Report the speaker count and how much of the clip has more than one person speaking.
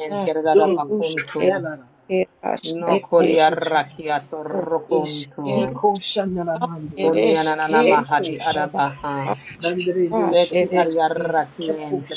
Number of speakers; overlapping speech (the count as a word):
three, about 61%